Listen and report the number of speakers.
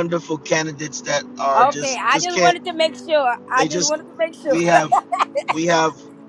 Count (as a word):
two